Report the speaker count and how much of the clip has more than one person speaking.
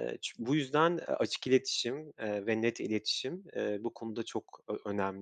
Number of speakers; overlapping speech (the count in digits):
1, no overlap